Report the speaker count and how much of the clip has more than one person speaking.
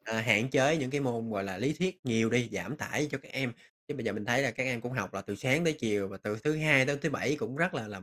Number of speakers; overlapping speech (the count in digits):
1, no overlap